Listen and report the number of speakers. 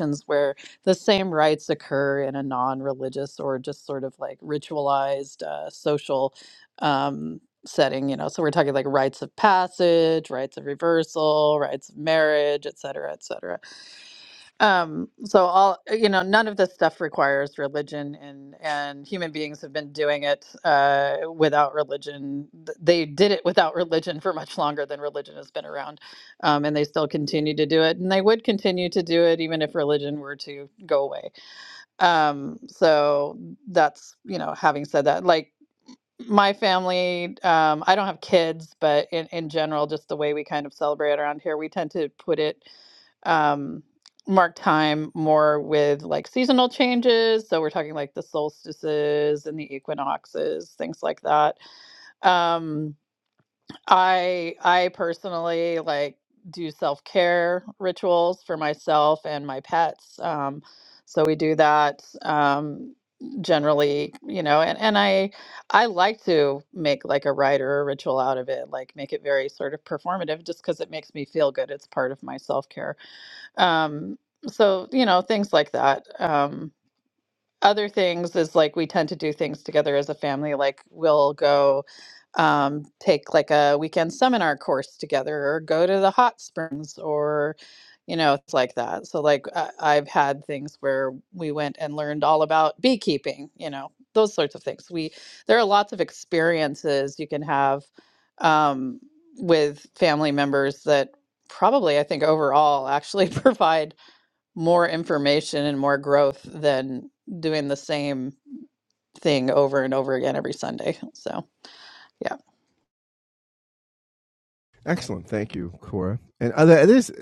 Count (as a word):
two